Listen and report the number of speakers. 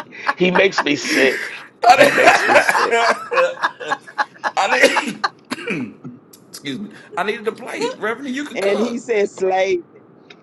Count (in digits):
3